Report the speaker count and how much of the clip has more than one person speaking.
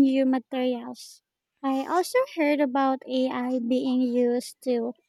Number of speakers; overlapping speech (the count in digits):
1, no overlap